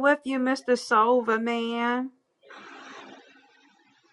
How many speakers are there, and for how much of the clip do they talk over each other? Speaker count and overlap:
1, no overlap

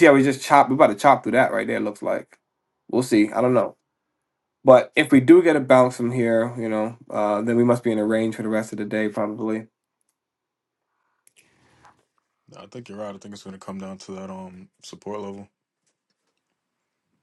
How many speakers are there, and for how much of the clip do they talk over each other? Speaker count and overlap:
2, no overlap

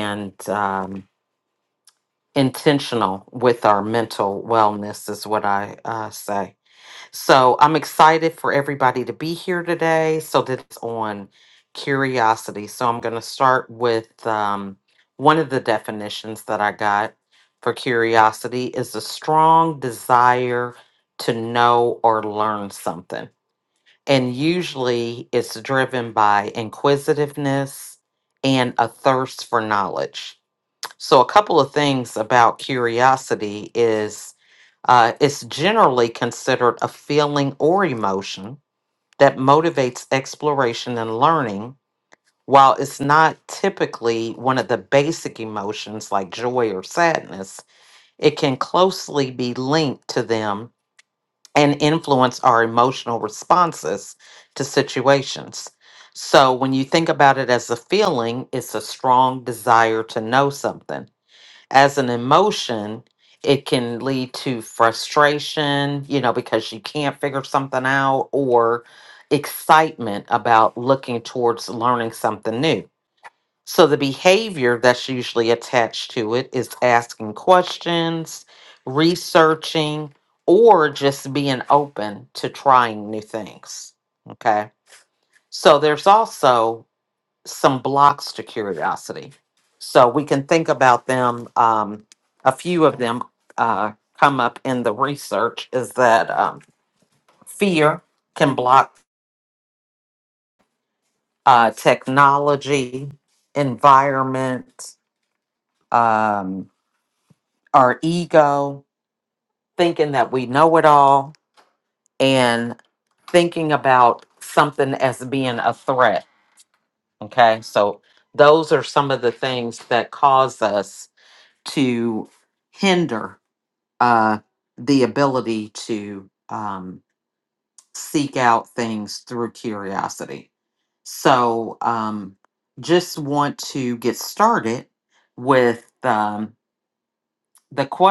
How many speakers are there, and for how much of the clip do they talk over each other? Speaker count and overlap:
1, no overlap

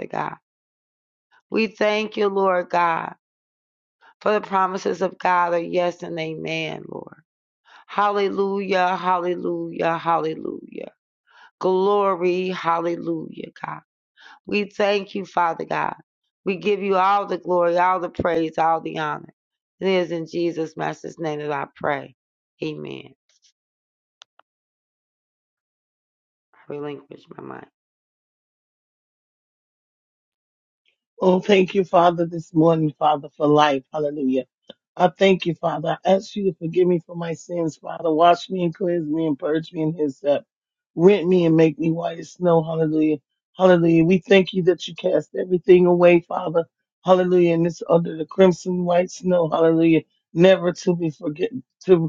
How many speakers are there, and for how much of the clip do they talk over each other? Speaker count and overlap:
2, no overlap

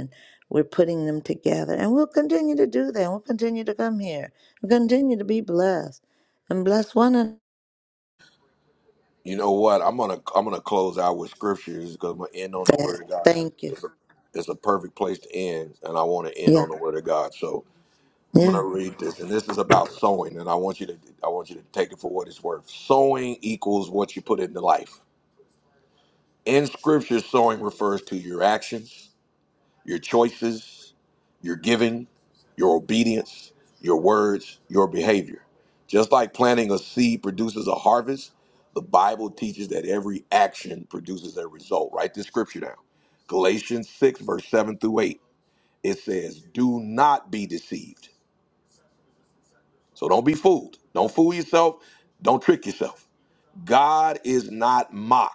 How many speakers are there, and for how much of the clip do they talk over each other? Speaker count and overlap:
2, about 2%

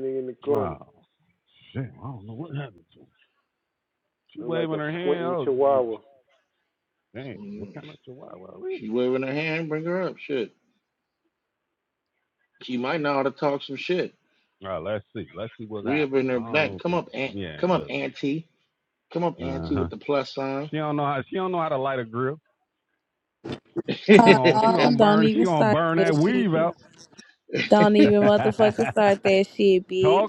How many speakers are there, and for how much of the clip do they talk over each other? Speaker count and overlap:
4, about 21%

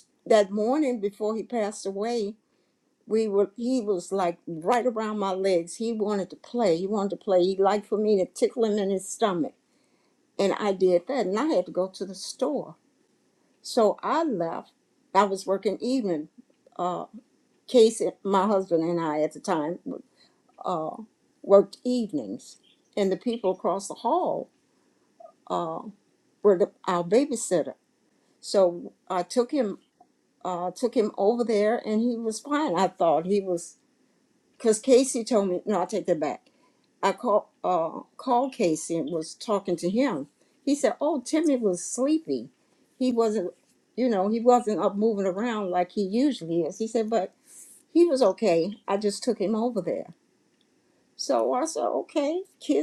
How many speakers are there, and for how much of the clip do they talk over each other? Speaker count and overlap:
1, no overlap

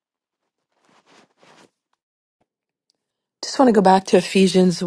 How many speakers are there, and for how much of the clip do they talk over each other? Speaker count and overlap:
1, no overlap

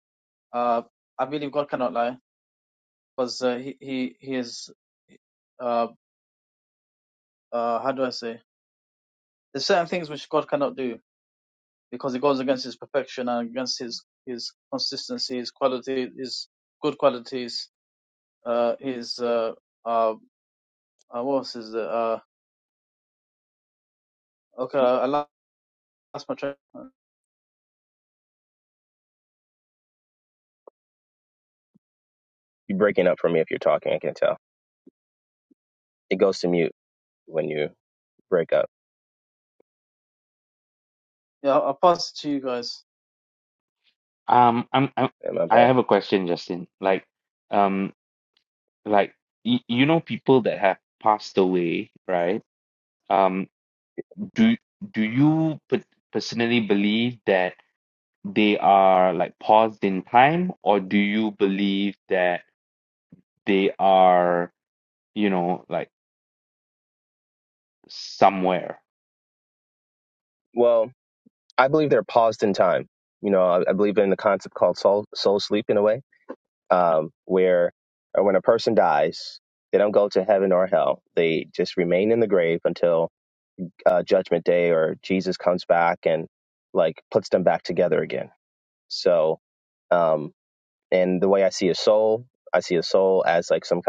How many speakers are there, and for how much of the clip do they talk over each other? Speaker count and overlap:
3, under 1%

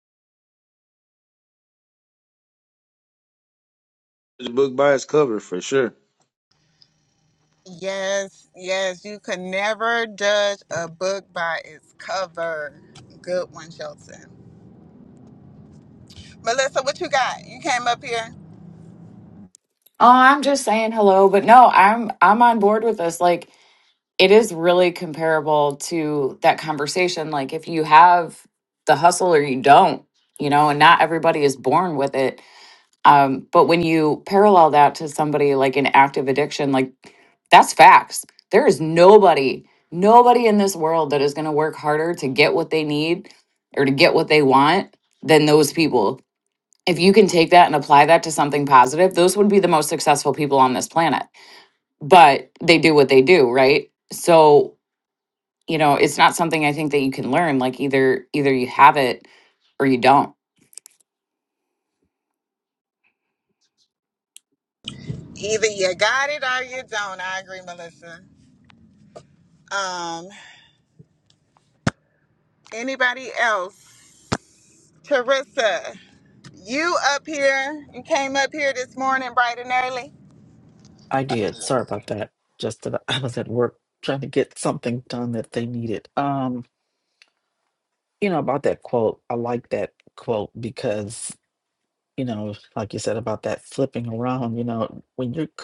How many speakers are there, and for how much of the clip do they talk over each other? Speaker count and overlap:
4, no overlap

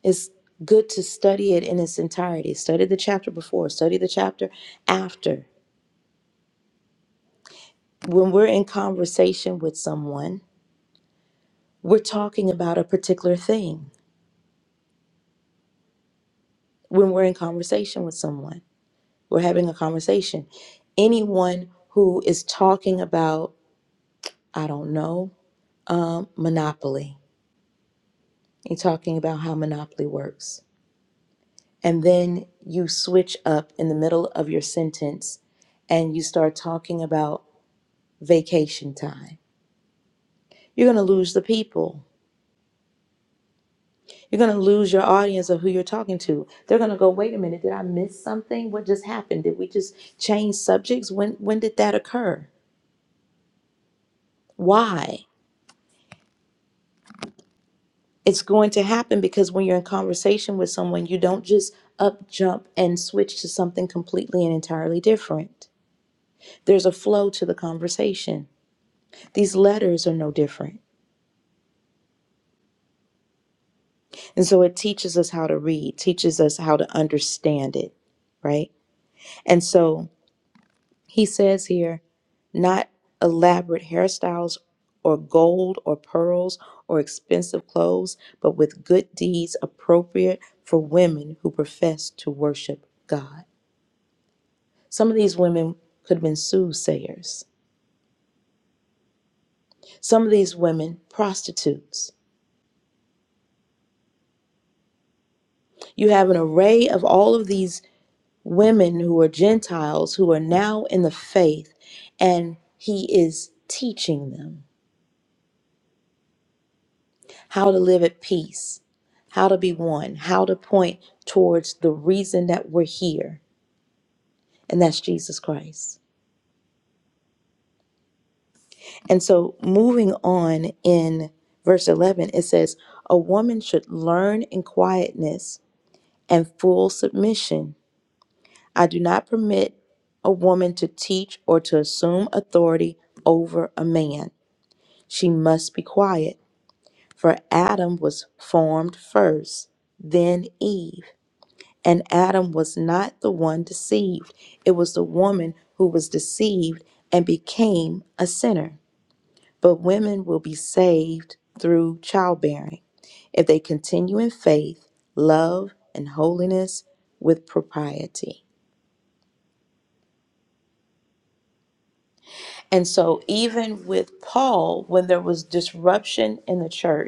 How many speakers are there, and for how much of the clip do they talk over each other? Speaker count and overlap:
1, no overlap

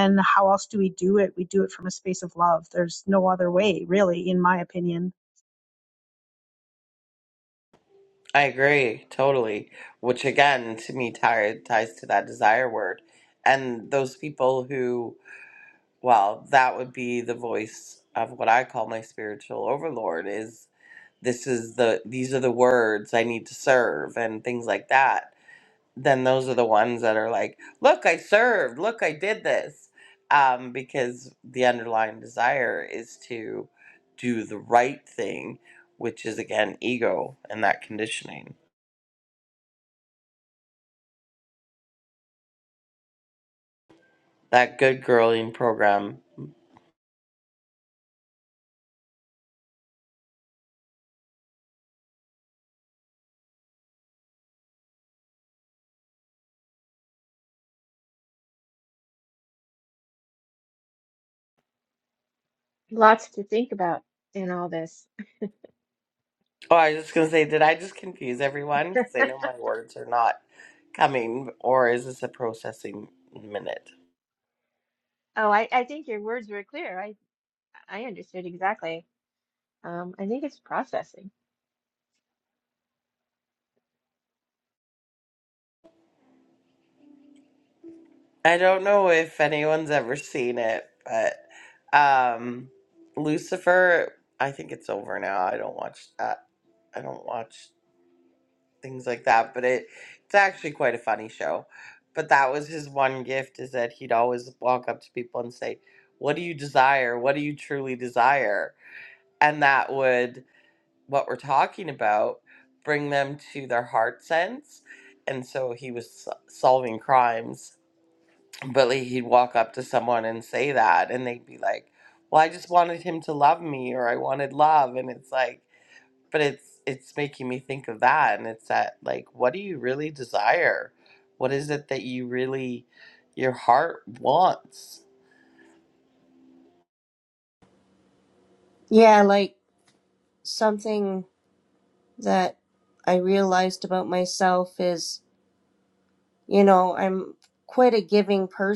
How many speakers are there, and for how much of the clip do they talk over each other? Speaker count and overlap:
4, no overlap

